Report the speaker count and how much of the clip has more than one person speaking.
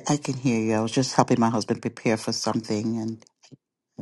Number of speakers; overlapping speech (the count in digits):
1, no overlap